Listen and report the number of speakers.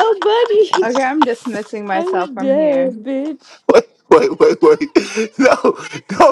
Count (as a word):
three